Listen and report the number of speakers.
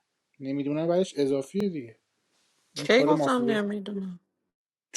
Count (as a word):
two